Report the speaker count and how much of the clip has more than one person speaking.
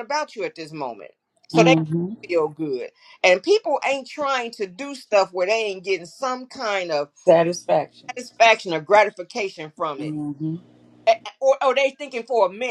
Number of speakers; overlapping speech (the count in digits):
2, about 3%